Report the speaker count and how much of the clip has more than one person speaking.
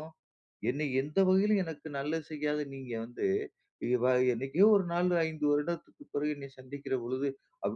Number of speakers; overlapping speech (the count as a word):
one, no overlap